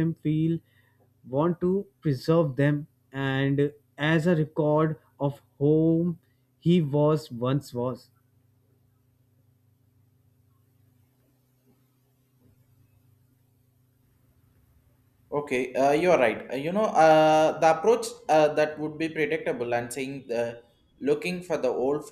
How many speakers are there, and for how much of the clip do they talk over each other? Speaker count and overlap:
2, no overlap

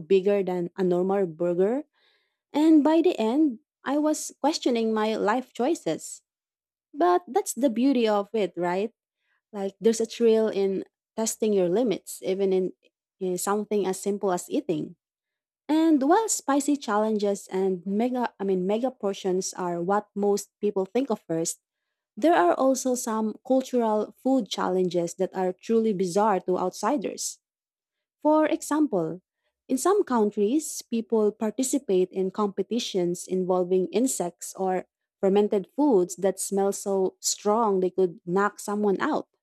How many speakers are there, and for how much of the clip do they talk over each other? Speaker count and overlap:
1, no overlap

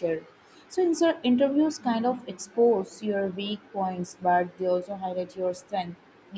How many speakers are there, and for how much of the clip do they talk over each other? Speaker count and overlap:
1, no overlap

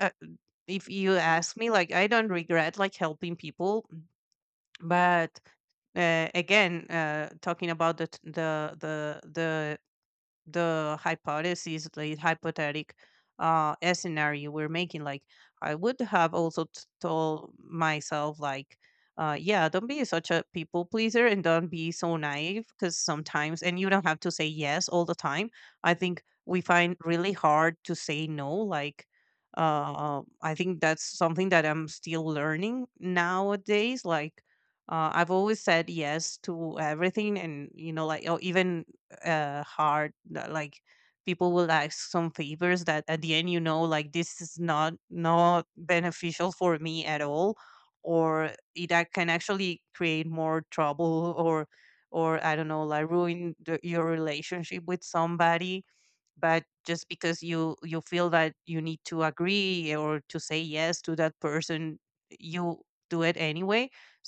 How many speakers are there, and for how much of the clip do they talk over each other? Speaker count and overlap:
1, no overlap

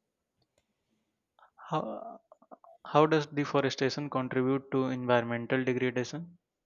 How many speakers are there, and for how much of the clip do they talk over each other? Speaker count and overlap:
1, no overlap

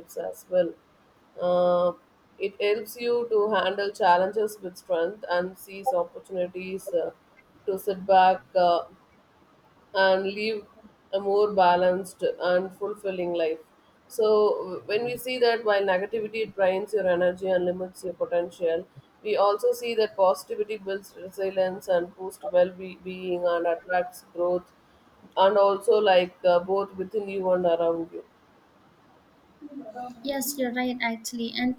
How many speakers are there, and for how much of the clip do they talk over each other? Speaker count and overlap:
2, no overlap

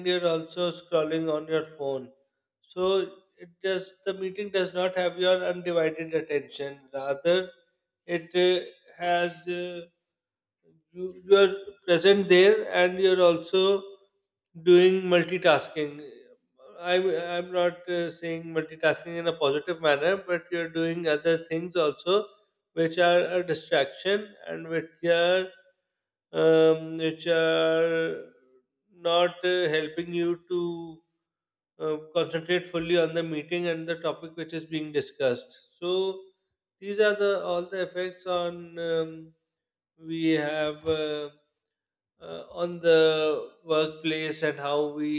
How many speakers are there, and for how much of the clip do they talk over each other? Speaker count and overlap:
1, no overlap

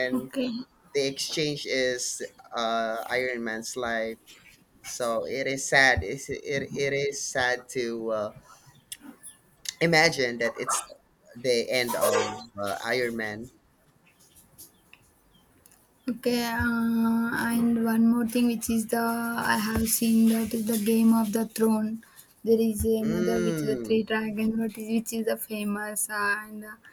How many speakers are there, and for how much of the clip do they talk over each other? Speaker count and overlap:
2, about 5%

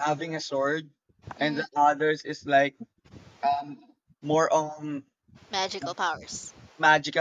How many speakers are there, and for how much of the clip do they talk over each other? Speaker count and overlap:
2, about 4%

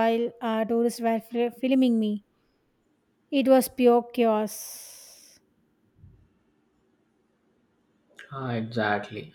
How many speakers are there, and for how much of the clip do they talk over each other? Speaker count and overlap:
2, no overlap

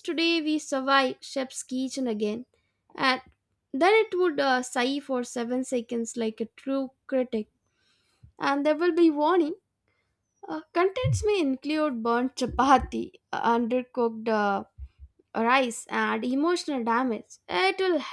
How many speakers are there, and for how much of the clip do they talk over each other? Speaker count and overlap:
1, no overlap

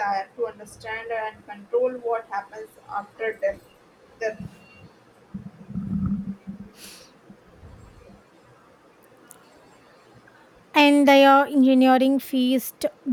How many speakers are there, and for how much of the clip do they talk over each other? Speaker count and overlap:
2, no overlap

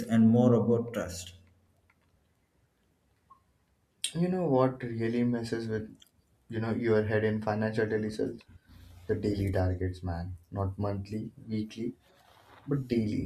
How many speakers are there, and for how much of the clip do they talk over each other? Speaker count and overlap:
2, no overlap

